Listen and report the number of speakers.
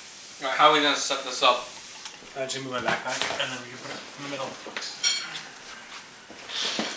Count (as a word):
two